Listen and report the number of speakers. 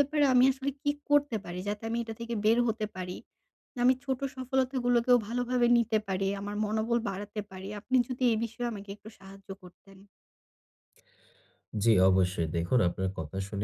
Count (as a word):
two